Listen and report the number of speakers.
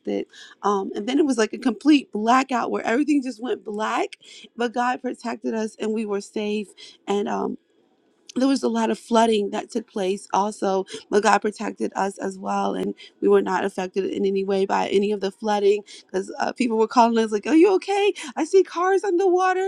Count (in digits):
1